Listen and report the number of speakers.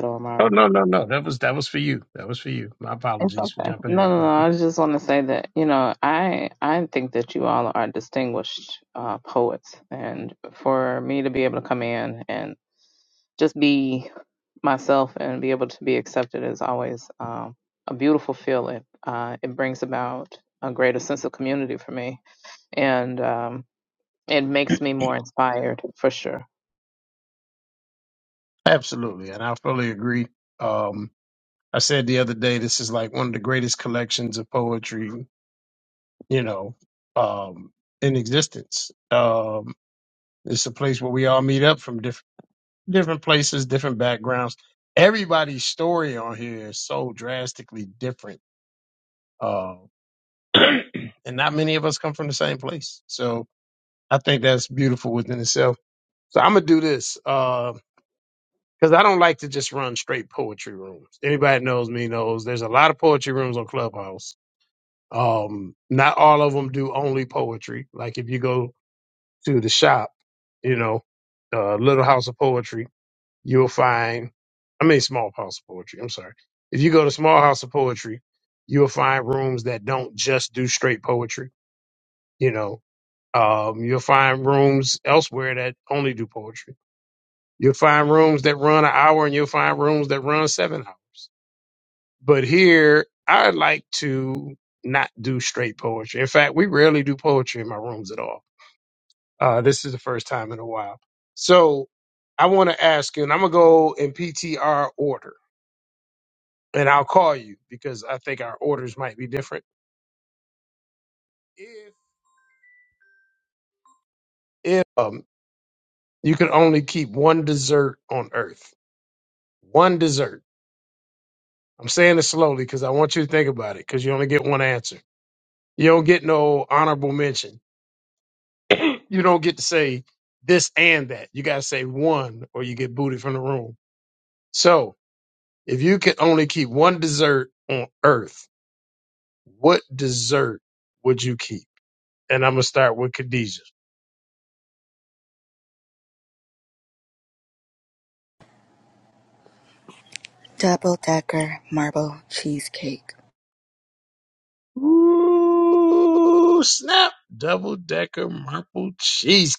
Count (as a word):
three